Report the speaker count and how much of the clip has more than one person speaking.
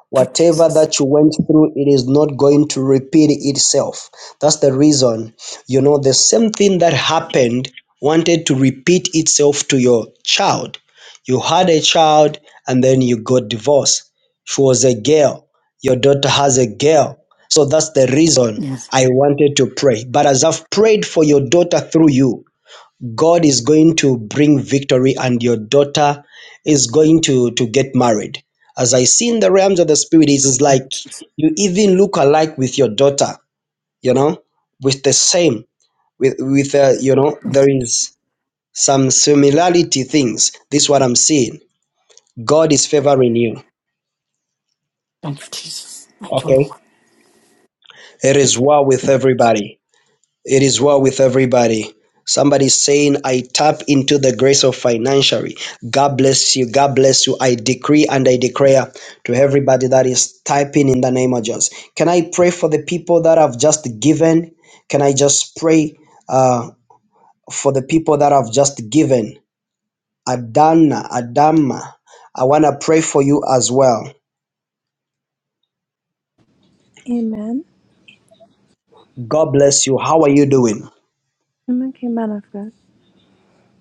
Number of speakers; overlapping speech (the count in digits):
3, about 3%